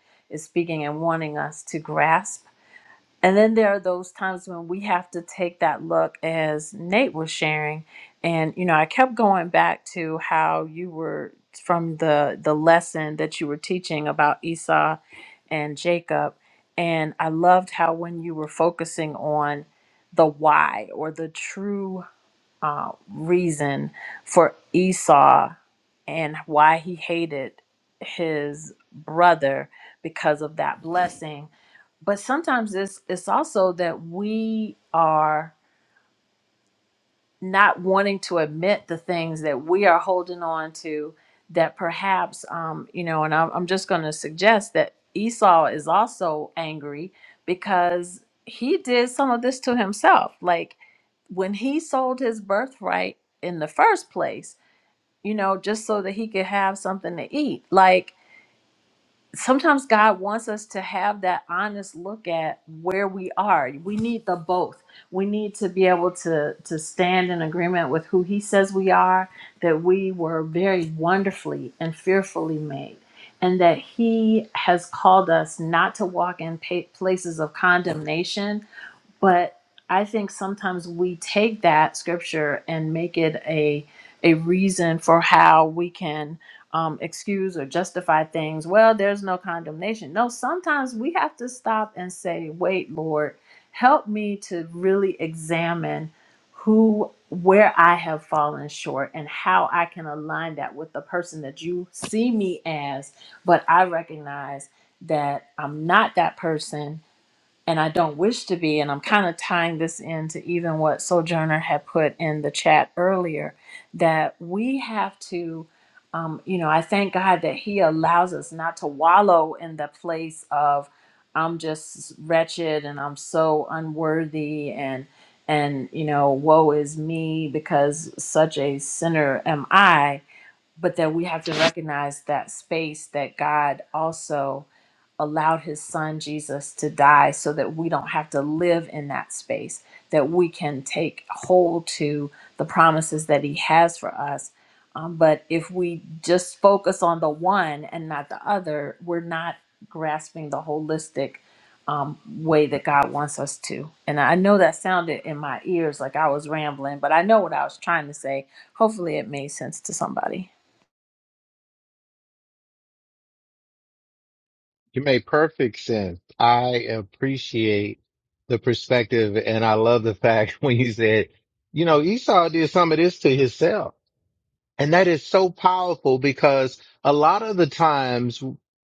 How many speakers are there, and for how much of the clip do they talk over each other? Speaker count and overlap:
2, no overlap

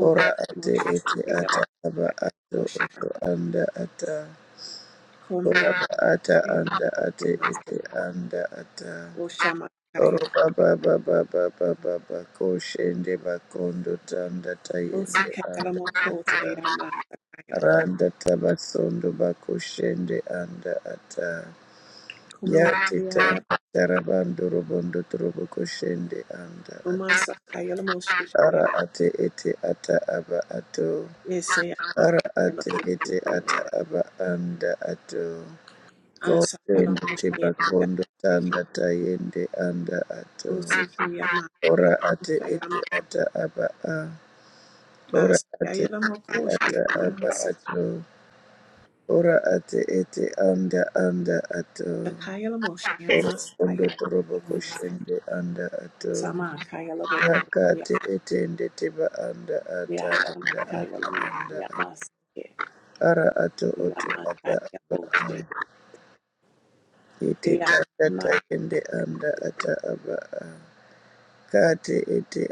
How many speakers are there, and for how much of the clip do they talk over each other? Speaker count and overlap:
2, about 20%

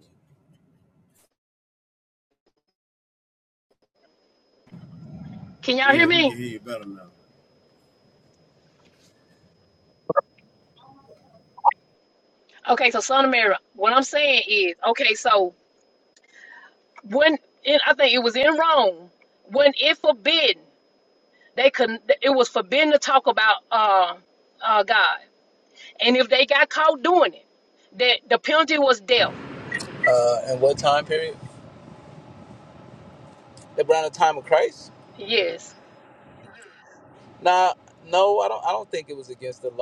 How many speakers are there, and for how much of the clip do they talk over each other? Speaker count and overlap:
3, about 1%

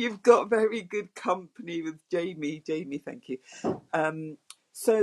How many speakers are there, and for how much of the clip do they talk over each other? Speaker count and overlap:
1, no overlap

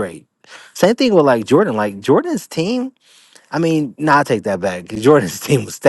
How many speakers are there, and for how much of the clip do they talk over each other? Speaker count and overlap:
1, no overlap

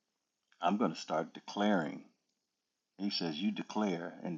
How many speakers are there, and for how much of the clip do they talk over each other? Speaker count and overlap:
1, no overlap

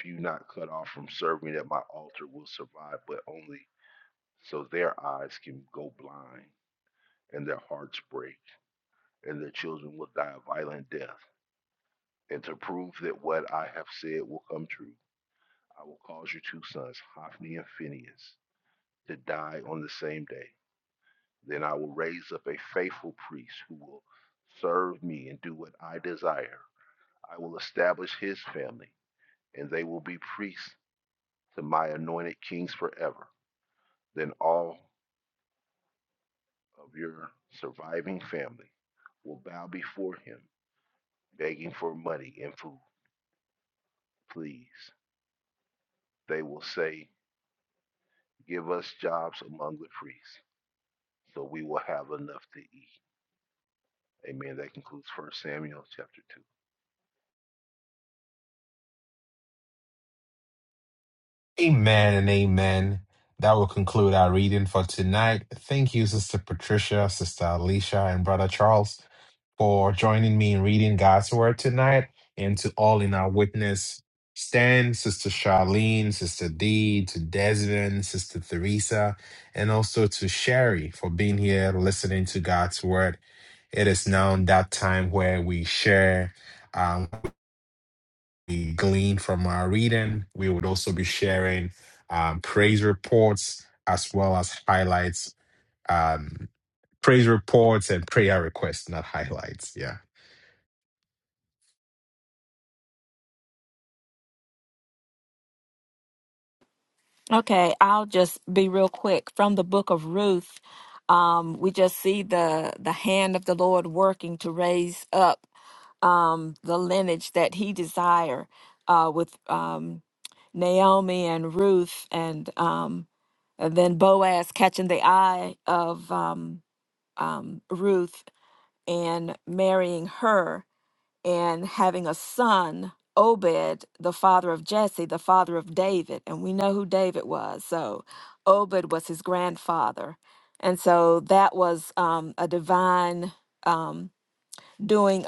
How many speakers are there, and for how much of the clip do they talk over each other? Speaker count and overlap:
3, no overlap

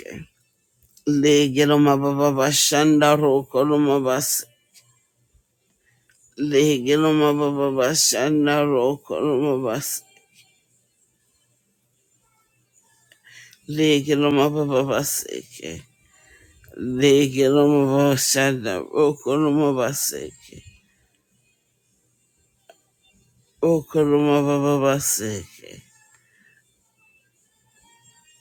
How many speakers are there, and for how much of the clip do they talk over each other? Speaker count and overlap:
1, no overlap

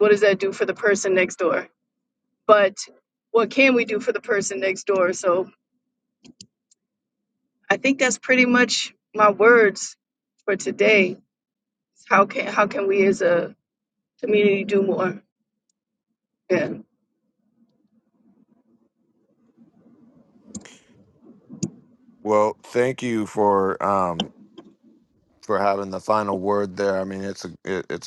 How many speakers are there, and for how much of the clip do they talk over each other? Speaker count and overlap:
2, no overlap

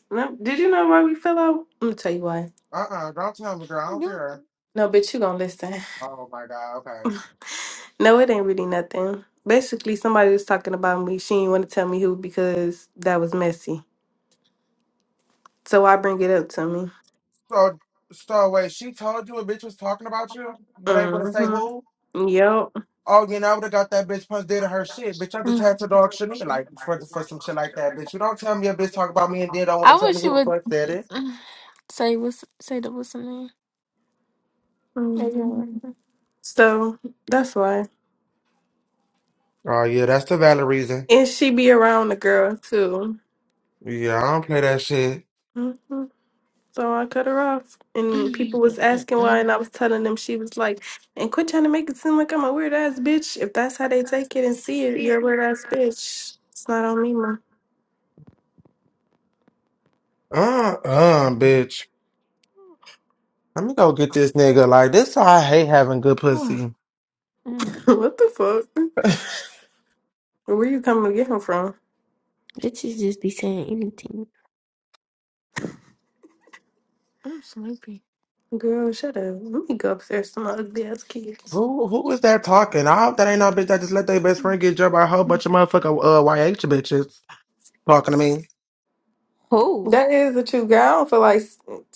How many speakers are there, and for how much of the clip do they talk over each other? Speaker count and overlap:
4, about 3%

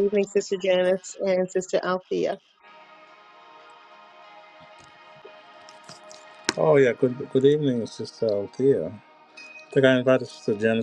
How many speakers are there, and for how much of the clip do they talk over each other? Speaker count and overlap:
2, no overlap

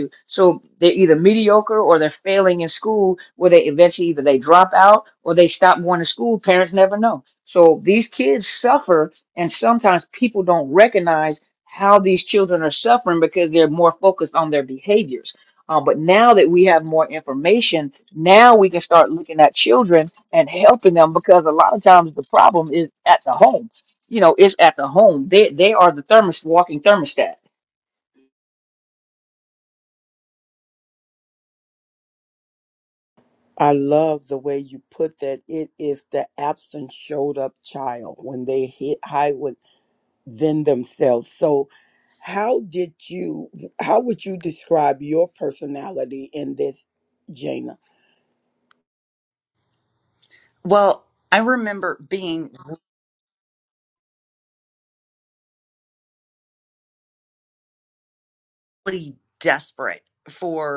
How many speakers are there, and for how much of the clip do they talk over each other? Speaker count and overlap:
3, no overlap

